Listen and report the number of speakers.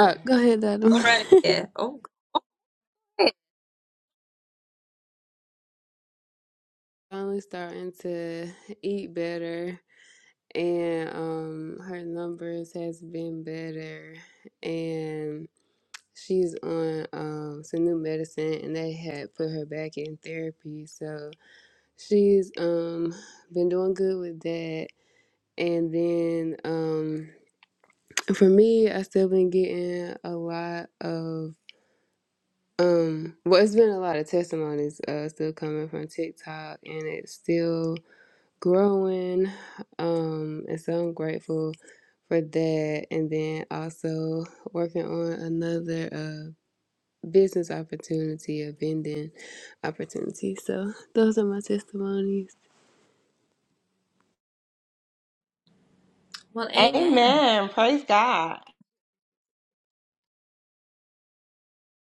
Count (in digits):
3